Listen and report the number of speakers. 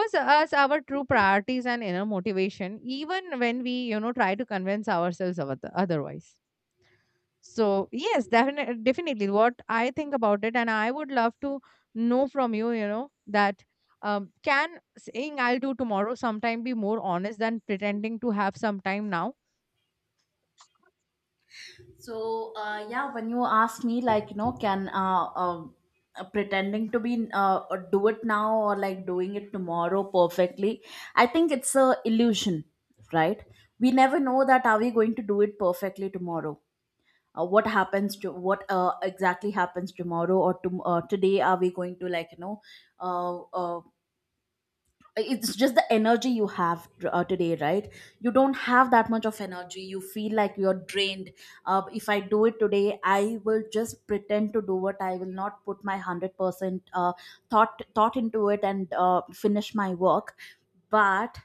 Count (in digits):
2